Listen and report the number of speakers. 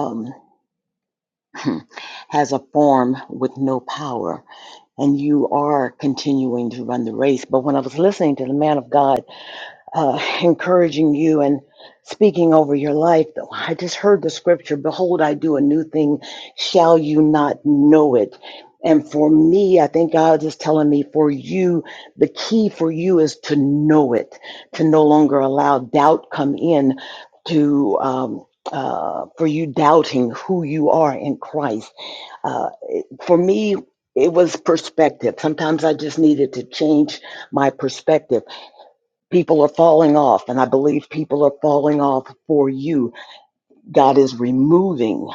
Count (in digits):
1